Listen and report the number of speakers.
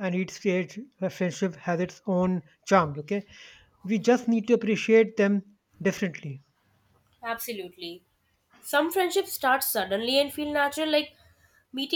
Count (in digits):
2